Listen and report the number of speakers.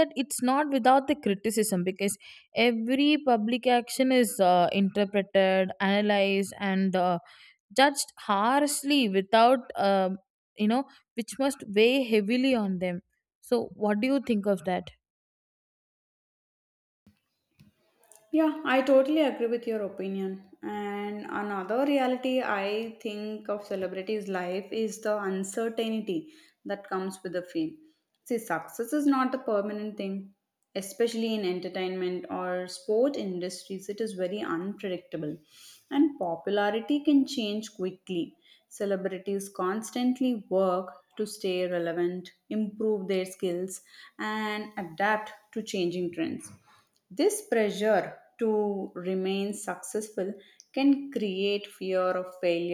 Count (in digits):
2